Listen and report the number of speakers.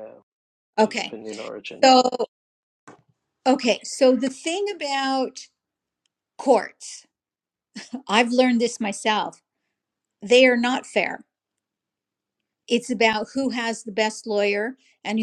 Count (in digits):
2